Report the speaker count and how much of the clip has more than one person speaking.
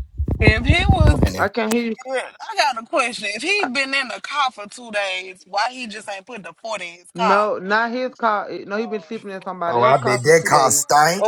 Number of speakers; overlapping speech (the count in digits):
3, about 20%